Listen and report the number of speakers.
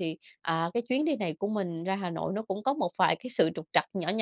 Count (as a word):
one